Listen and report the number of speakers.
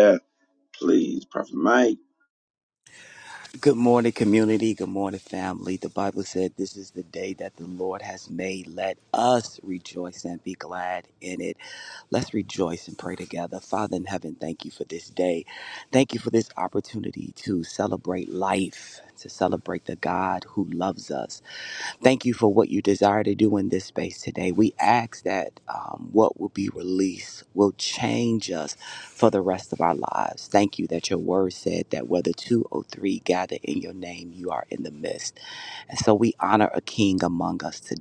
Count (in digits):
2